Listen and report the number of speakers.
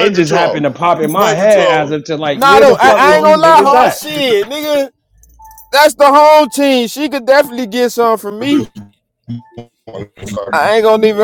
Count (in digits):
3